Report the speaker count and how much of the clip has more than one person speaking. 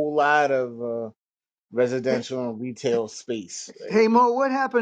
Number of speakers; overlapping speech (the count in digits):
2, about 6%